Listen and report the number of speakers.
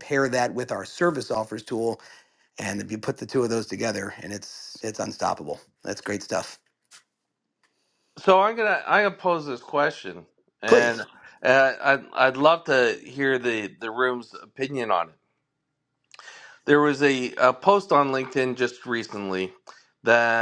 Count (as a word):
two